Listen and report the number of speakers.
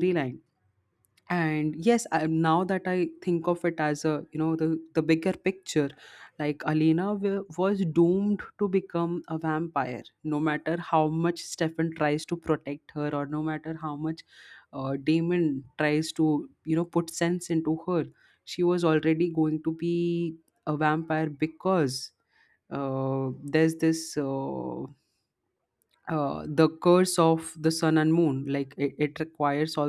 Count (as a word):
one